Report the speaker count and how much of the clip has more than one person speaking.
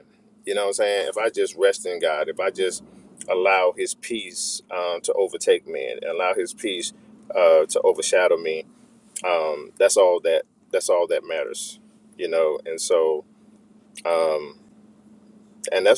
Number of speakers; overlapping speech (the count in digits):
1, no overlap